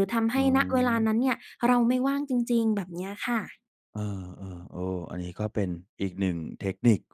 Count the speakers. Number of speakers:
two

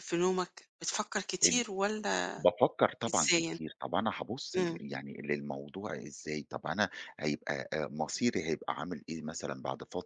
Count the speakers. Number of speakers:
two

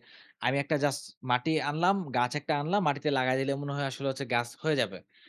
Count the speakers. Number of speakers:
one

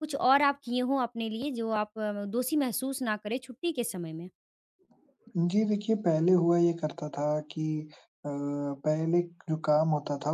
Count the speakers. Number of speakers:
two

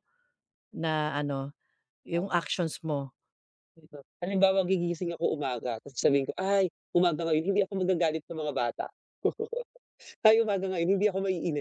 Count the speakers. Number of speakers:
two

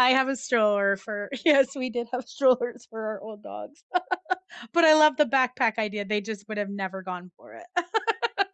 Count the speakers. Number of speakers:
one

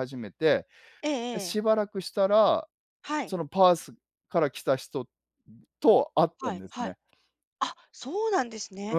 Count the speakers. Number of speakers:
two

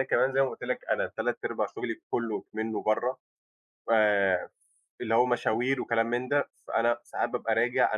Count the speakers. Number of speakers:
one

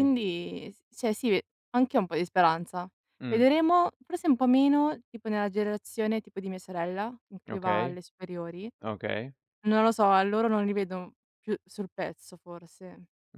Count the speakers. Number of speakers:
two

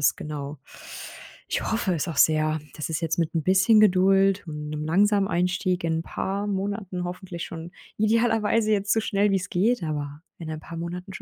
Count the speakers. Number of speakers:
one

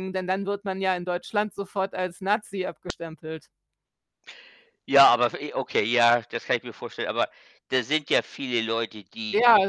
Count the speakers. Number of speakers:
two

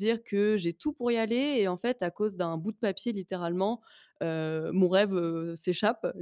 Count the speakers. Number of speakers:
one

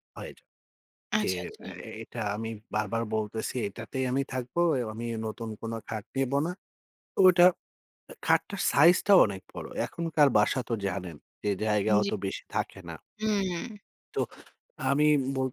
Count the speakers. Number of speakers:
two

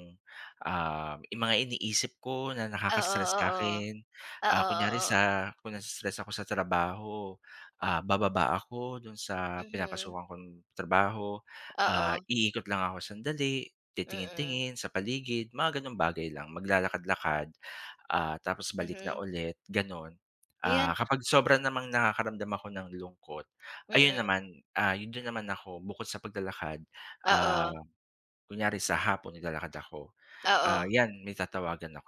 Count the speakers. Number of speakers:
two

